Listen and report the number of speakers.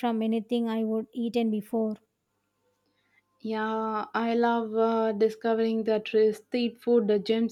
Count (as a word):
two